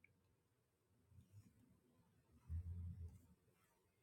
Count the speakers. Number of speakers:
0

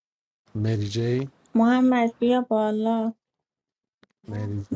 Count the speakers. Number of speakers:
2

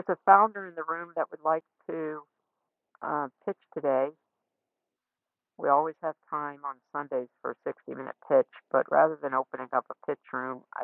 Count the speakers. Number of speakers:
1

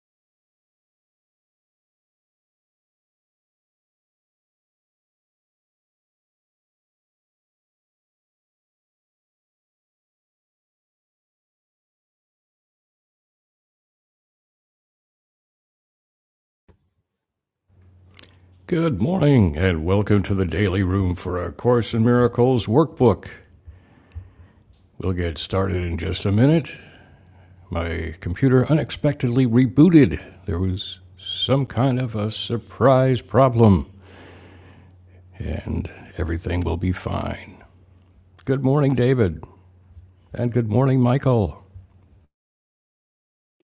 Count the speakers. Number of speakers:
1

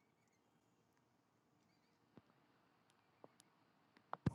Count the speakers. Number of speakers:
0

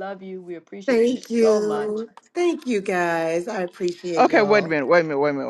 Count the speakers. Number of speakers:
3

